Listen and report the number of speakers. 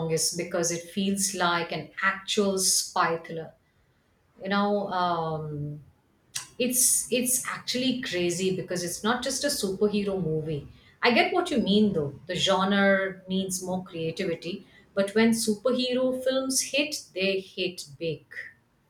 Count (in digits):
1